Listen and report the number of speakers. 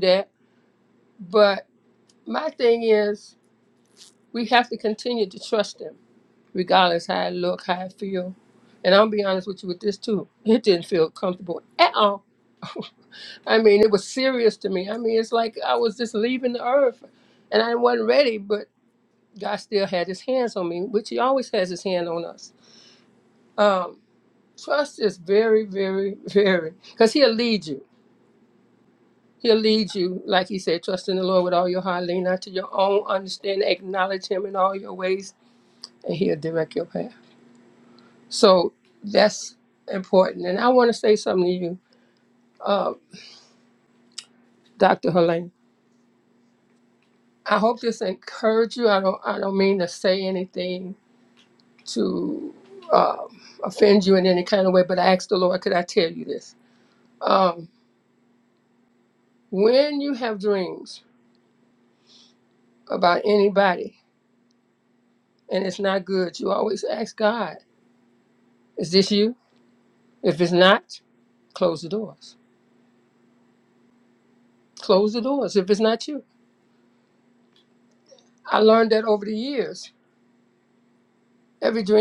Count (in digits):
1